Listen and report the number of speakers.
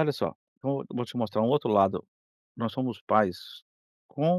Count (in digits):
1